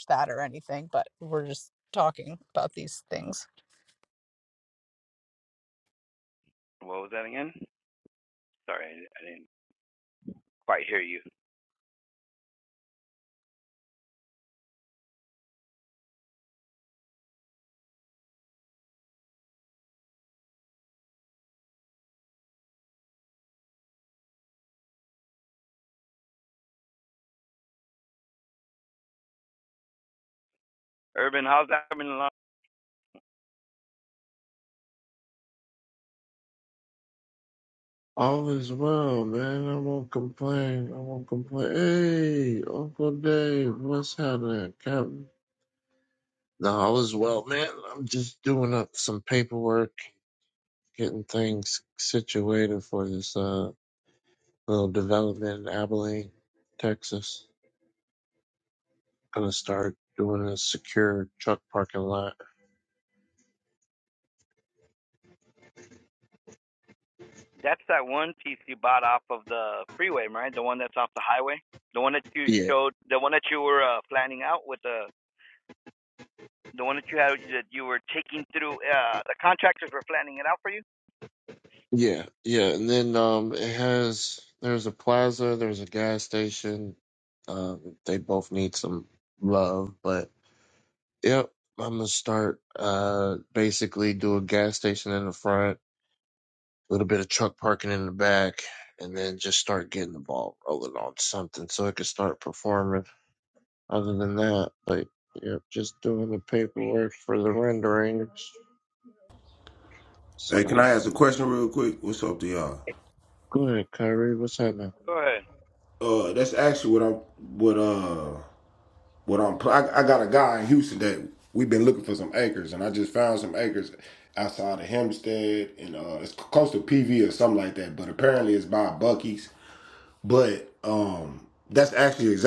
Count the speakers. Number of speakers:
4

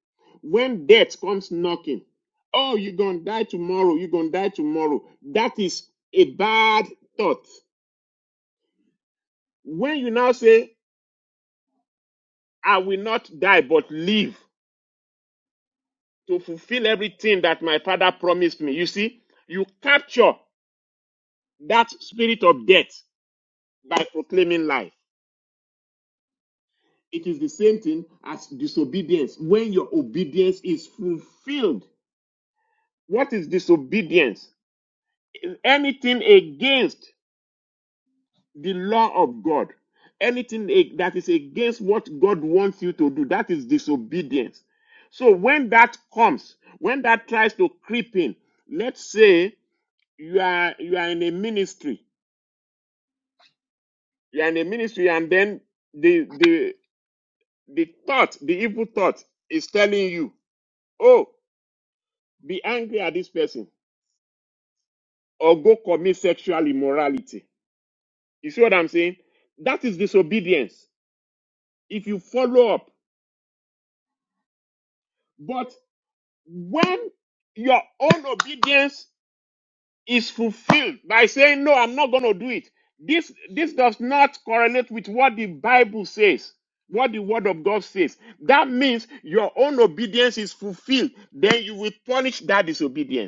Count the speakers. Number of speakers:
1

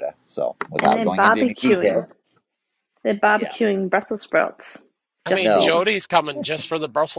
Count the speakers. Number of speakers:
3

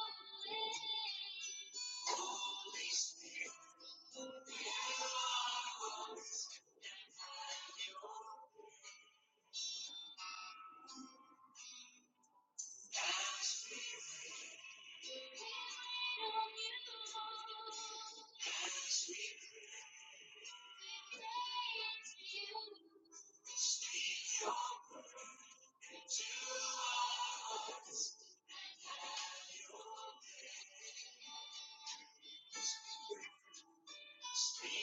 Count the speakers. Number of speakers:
0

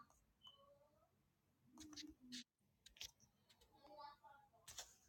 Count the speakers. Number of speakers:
0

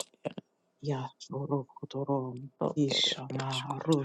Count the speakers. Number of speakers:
2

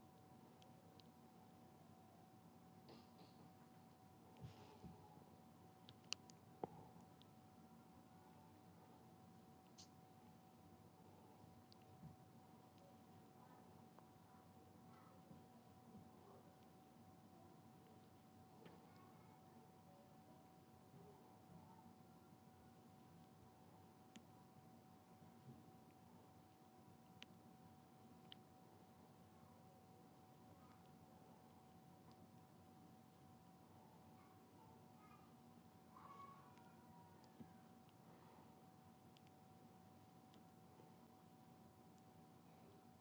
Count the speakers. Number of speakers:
0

